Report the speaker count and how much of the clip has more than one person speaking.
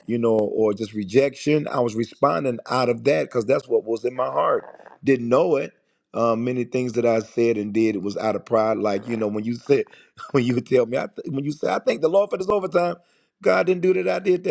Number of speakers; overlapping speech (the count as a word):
one, no overlap